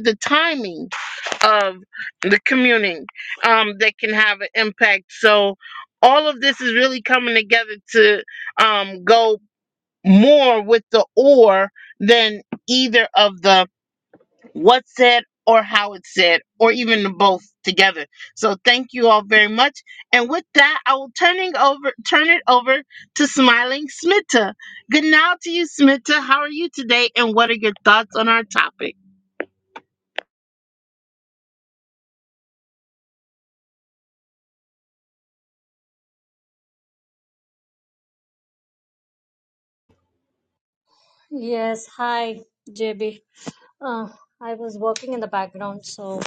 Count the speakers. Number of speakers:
2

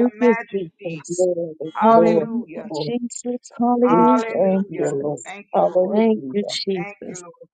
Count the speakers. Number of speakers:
3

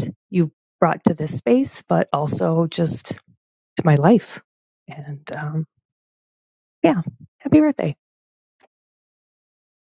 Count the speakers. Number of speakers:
1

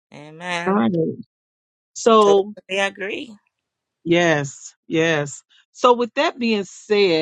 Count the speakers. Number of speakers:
2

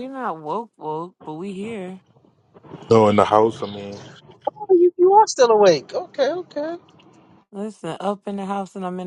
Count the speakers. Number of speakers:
3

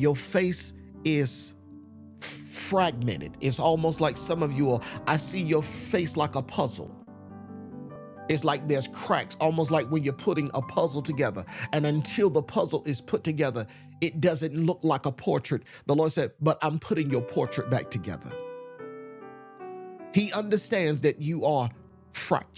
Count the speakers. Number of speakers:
1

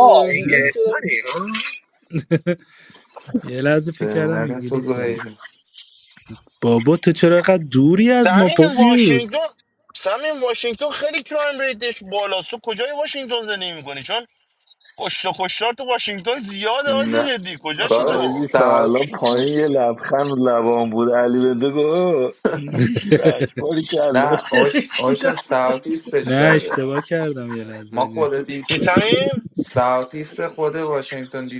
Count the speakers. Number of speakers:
5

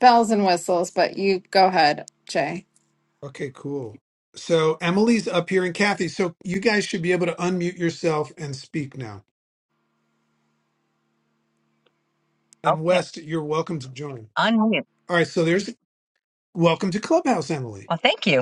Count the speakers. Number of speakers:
3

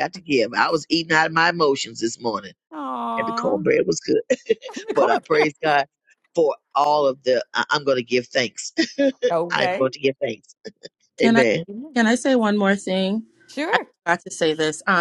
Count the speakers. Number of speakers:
3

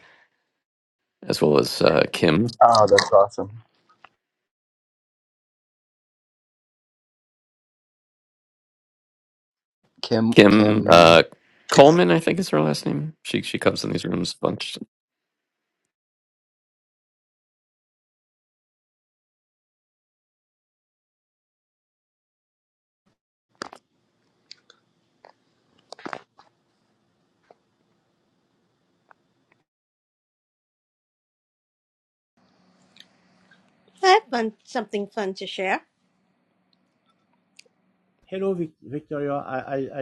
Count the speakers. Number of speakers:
4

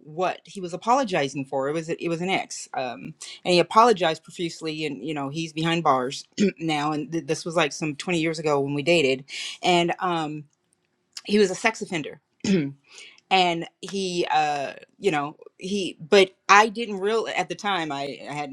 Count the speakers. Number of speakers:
1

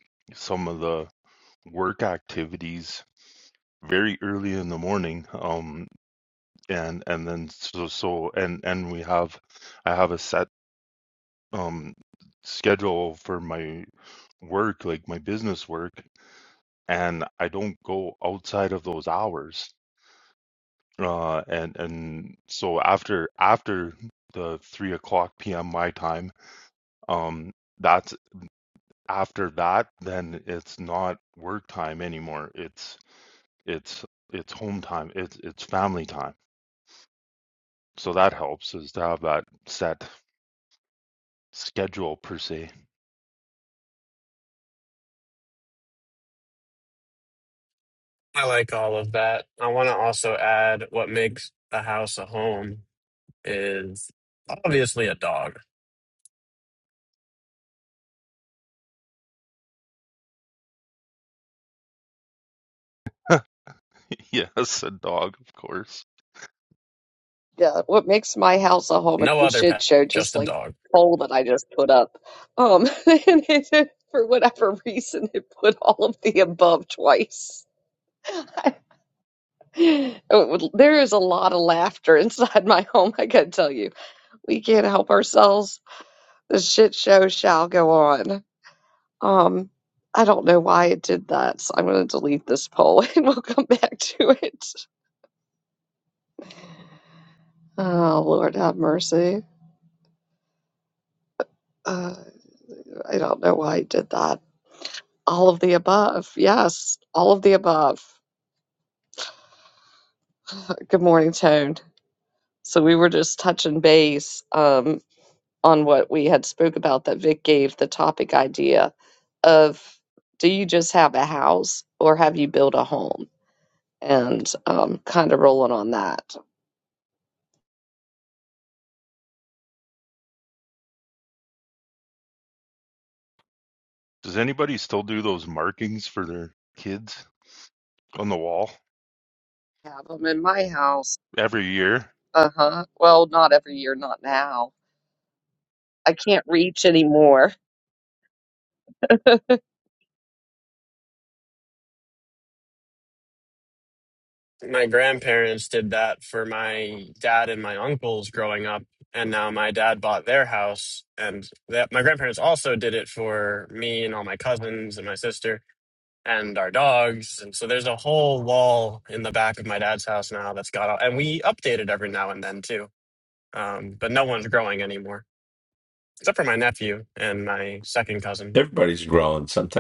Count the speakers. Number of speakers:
4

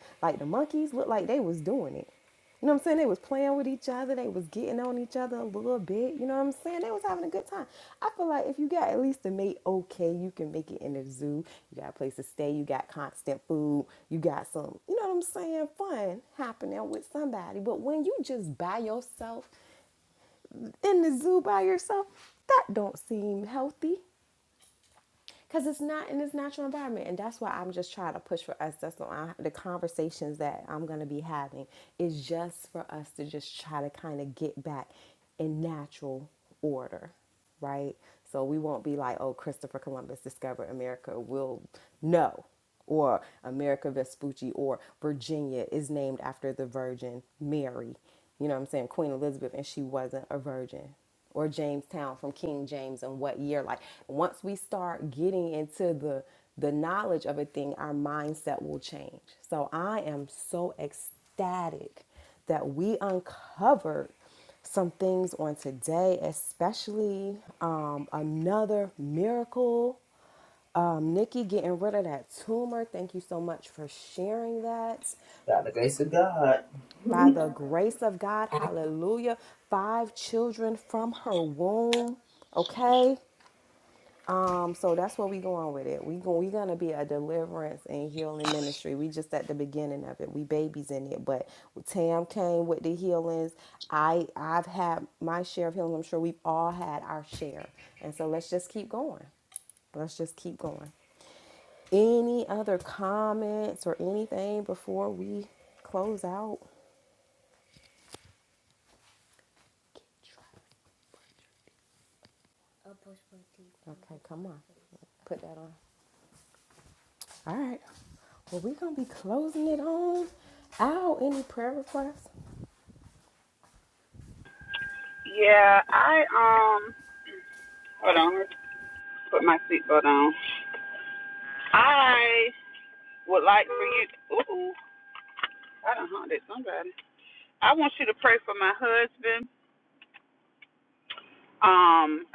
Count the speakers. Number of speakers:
3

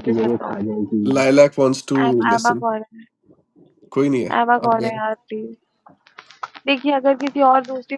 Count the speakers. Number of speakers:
3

